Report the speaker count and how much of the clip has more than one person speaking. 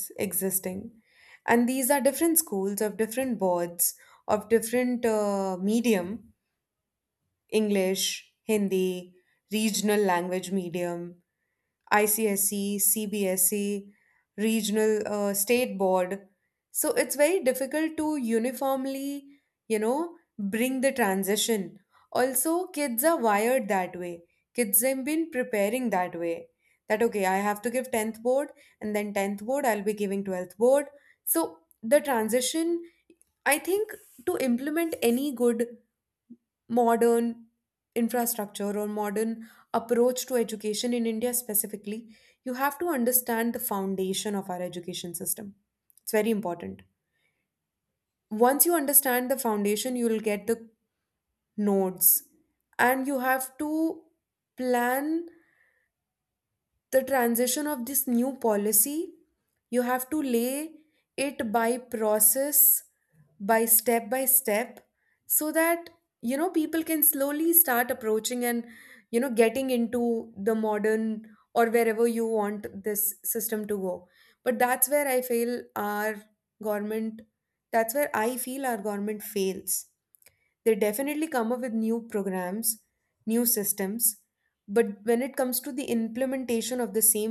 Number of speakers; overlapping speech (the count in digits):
1, no overlap